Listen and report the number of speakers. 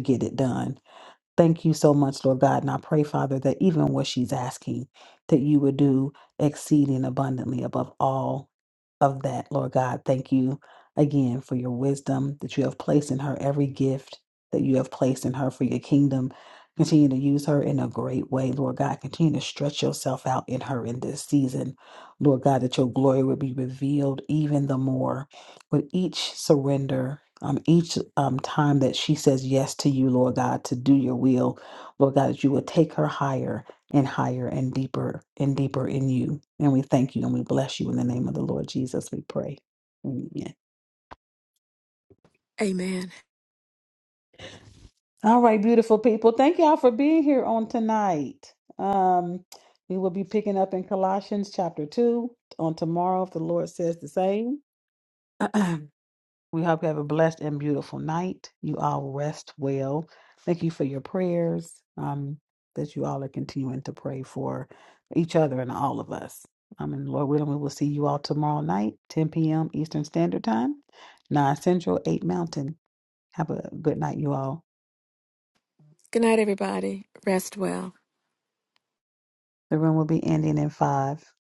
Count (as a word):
two